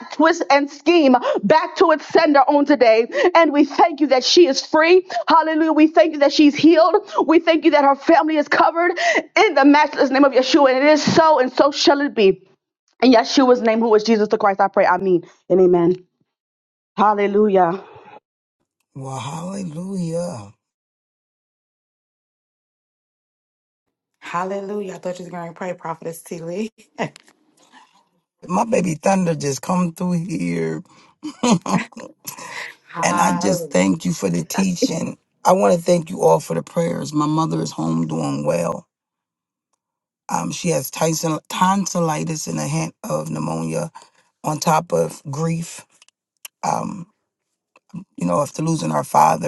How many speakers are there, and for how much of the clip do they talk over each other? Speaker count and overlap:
3, about 1%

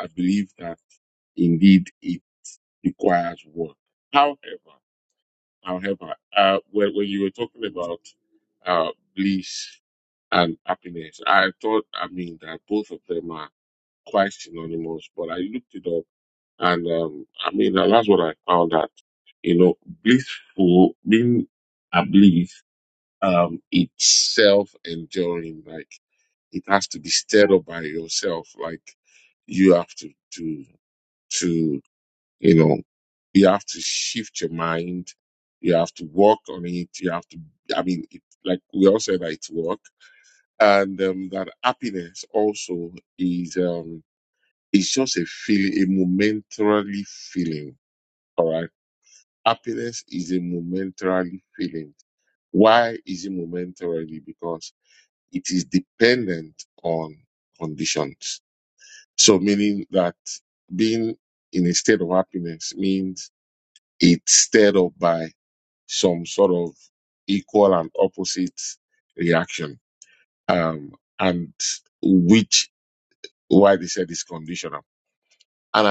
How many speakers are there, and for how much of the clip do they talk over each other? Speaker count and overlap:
1, no overlap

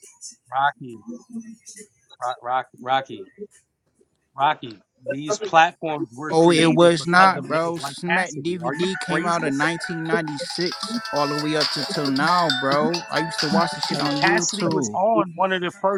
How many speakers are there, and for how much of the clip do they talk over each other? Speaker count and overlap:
2, about 27%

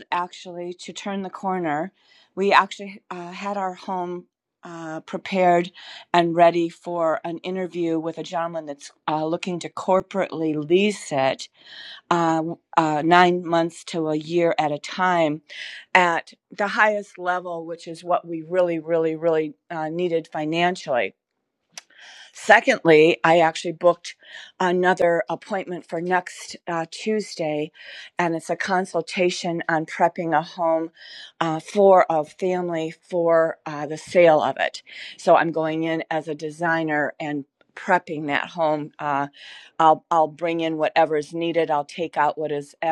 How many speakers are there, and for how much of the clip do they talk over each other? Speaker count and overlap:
1, no overlap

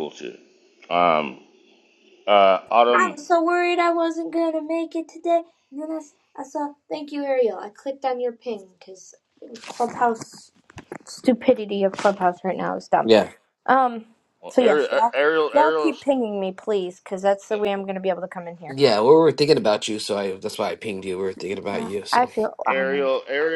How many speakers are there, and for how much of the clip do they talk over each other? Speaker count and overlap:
3, about 11%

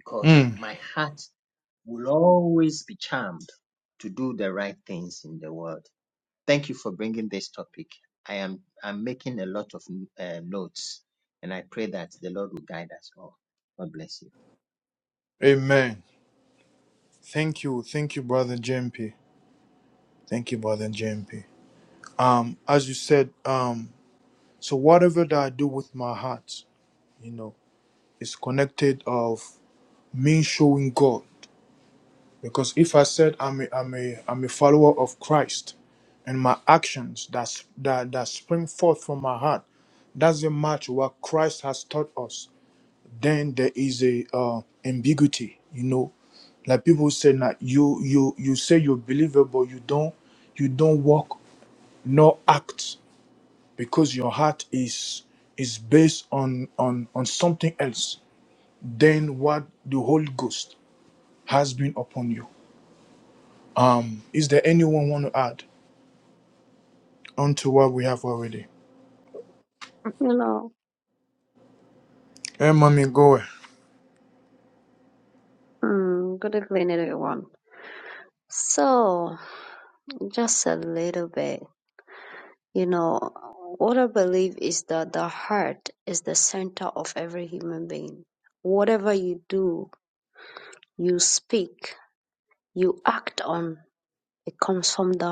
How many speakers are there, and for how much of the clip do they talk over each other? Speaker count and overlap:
3, under 1%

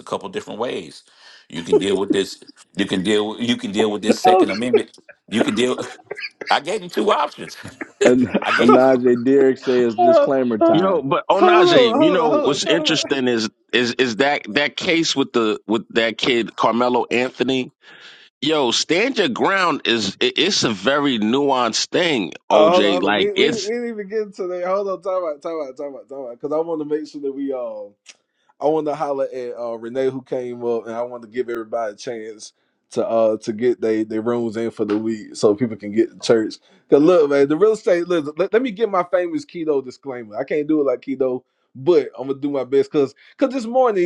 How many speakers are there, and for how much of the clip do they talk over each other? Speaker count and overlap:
4, about 10%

